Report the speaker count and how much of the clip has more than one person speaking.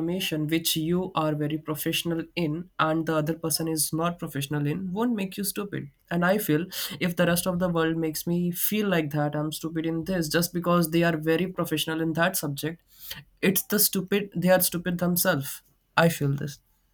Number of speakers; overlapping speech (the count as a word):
one, no overlap